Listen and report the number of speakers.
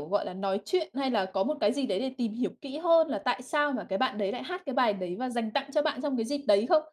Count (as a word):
one